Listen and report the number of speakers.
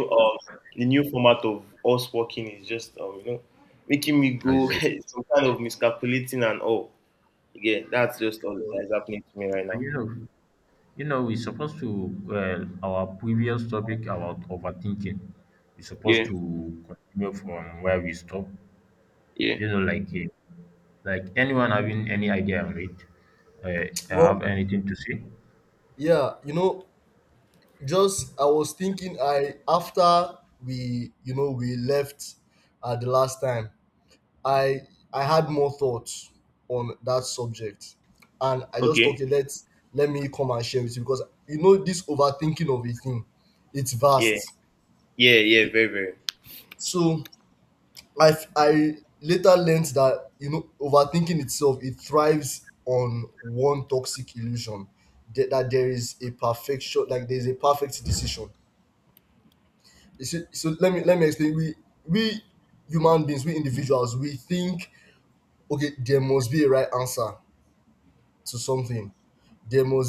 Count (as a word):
three